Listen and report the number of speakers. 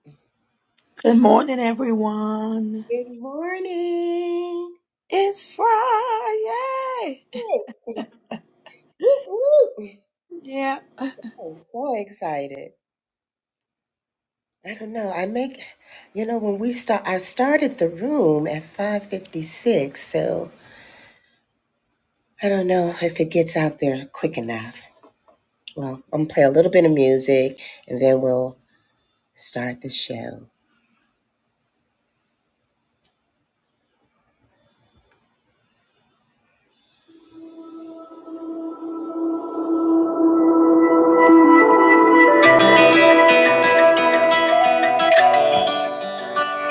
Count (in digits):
2